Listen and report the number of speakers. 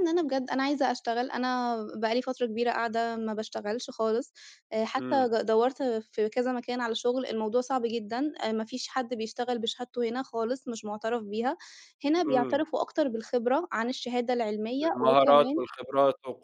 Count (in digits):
2